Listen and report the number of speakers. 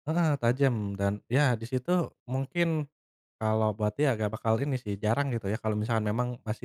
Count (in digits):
1